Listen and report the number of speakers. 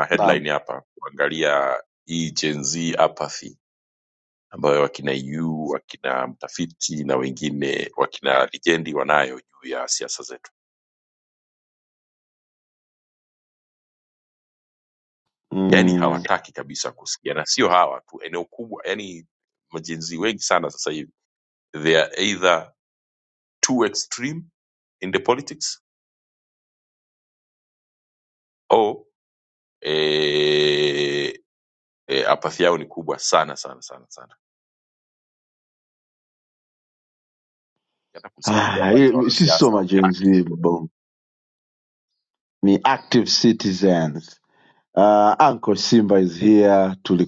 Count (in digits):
2